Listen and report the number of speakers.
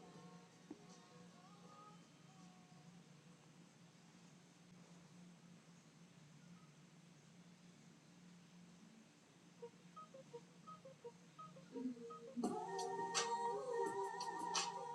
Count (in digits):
0